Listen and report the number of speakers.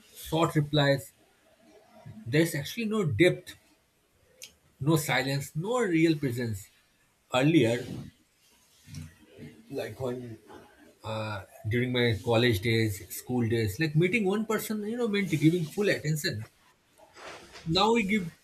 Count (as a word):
one